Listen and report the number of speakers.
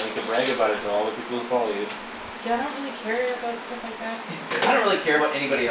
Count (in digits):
3